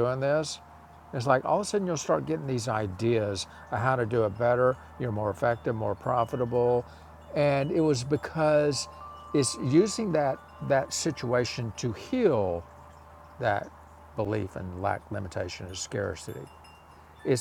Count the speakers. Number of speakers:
one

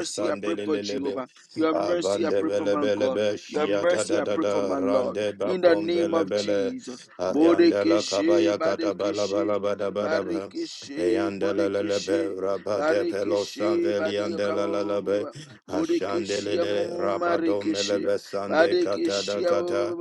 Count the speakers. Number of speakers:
two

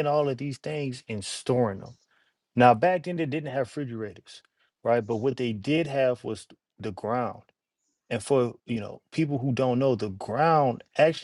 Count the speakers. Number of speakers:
one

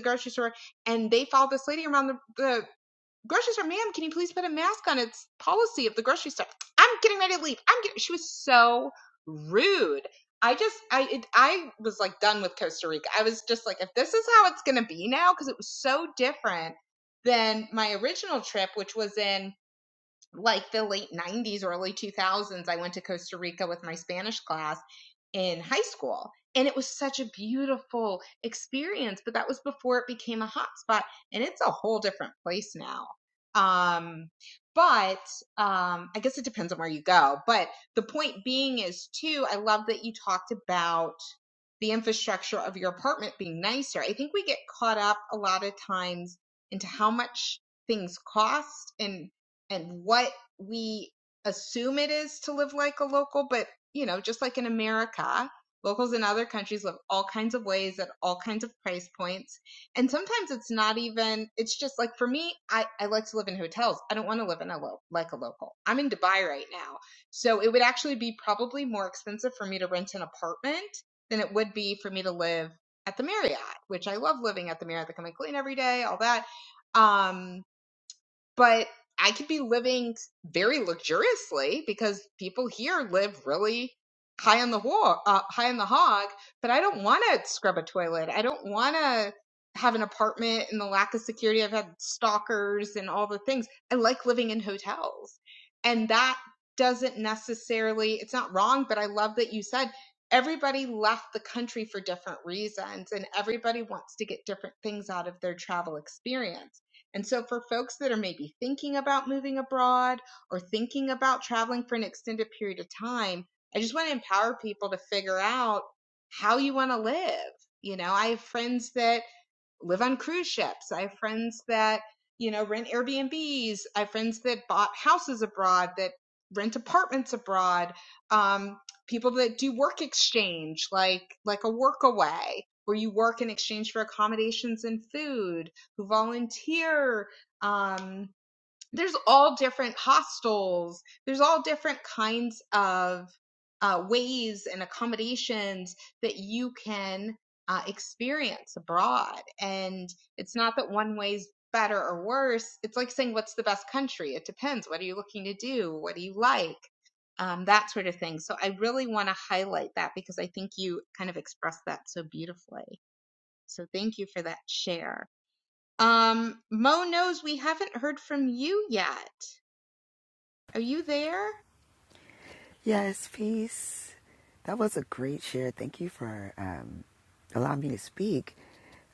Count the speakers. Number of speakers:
two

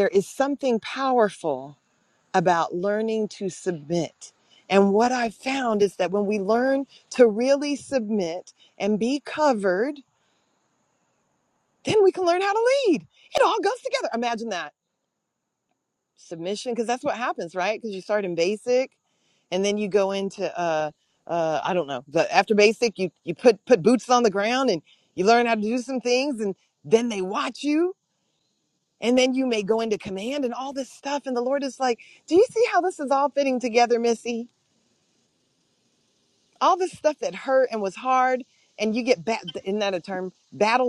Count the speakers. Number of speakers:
one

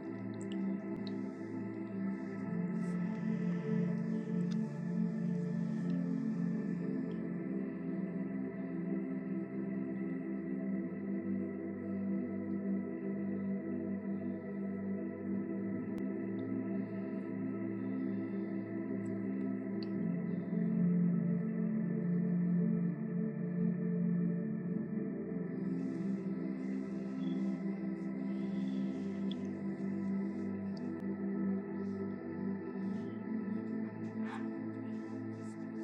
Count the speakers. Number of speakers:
zero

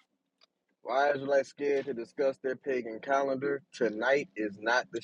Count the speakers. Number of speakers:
one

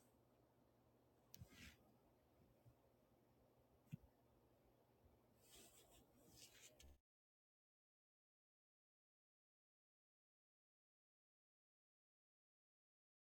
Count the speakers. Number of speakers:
zero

